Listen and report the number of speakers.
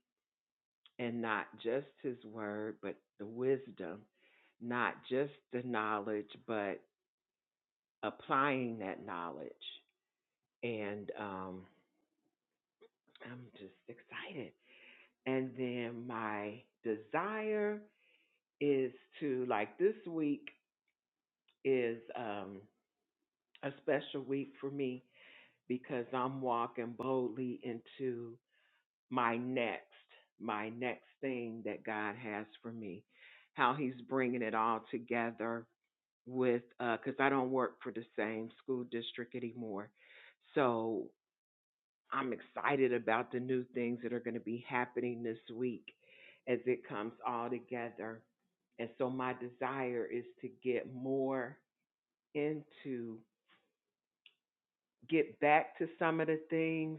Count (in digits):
1